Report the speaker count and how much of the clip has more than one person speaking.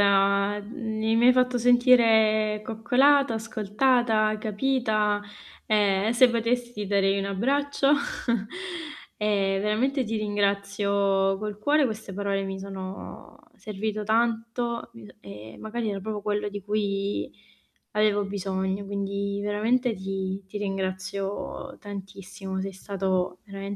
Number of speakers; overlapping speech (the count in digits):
1, no overlap